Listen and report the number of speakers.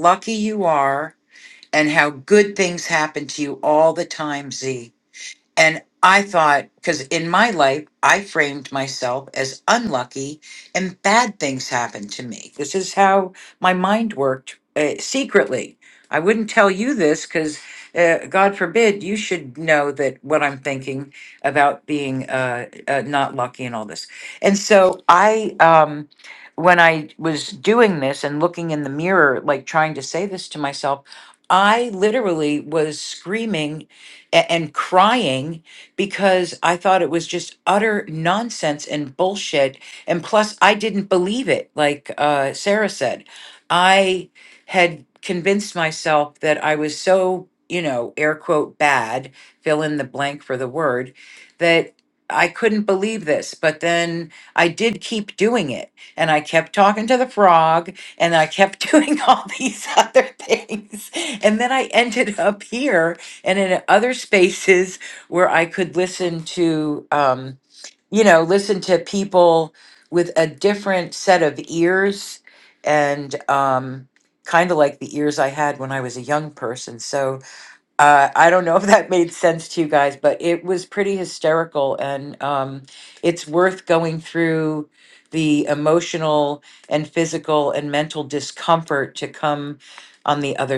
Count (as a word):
one